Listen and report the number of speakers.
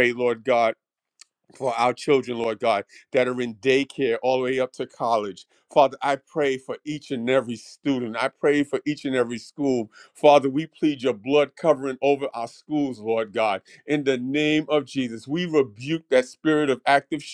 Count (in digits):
1